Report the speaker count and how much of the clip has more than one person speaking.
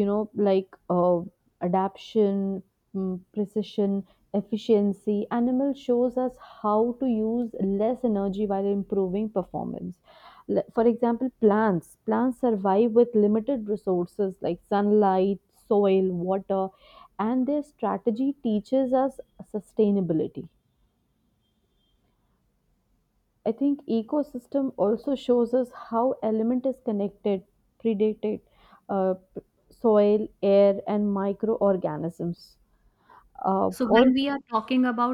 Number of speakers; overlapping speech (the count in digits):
2, about 1%